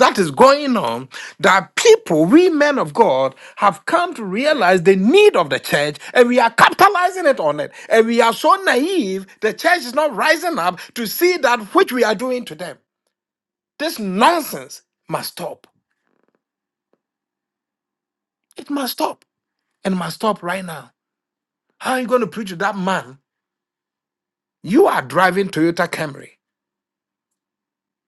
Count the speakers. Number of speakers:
one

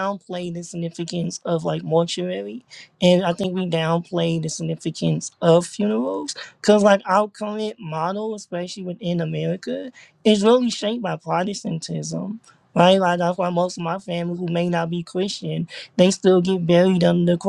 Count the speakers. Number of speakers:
one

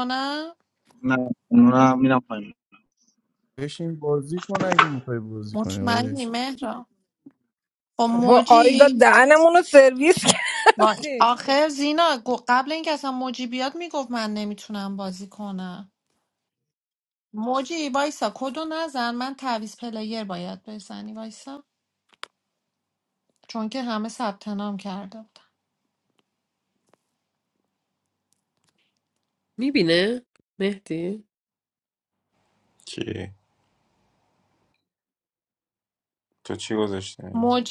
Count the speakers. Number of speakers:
six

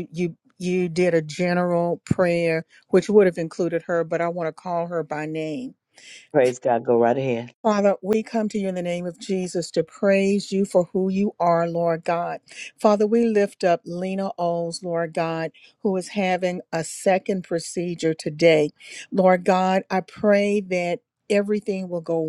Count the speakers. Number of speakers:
two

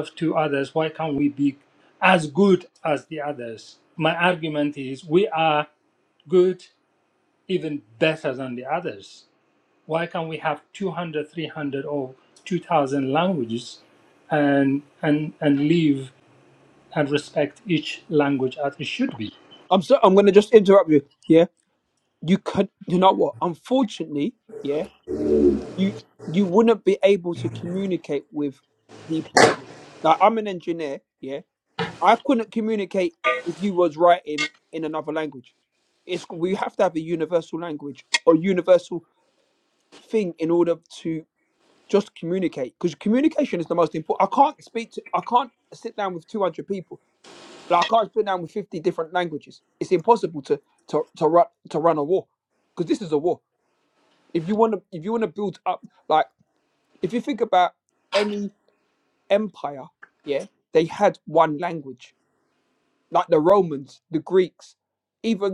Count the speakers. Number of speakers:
two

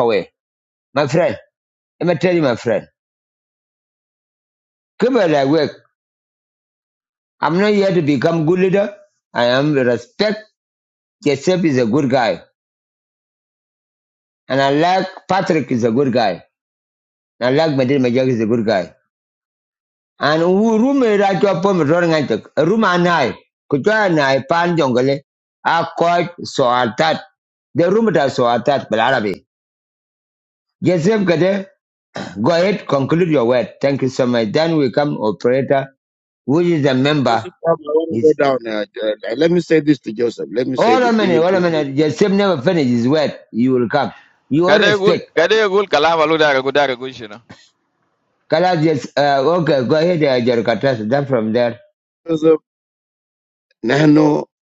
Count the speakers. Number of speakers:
three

